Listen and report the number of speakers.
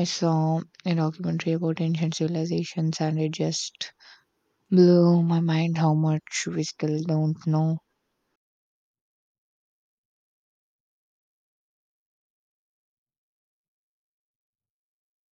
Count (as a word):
one